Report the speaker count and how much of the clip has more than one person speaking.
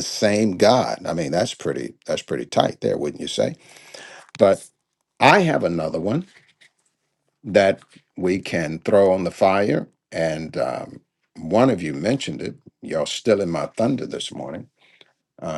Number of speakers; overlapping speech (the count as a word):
one, no overlap